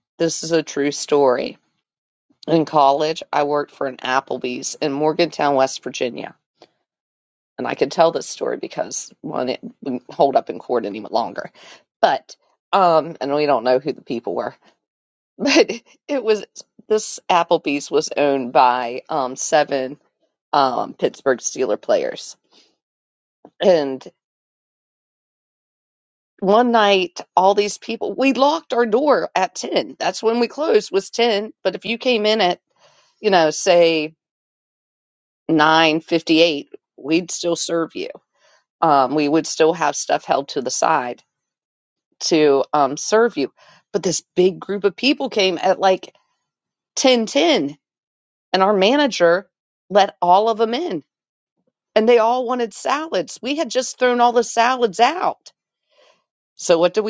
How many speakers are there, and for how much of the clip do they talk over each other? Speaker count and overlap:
1, no overlap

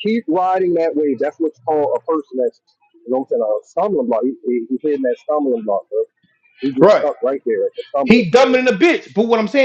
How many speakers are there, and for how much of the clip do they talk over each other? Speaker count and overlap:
2, about 8%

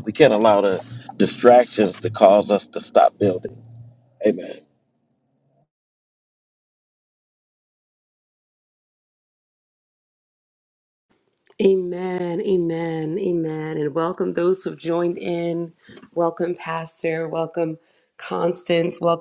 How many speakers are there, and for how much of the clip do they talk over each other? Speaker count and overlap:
2, no overlap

